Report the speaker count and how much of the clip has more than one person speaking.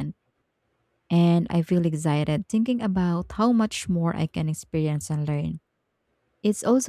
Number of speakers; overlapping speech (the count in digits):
1, no overlap